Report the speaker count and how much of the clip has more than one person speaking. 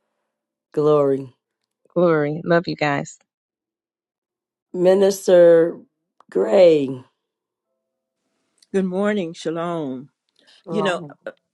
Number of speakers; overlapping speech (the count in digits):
3, about 3%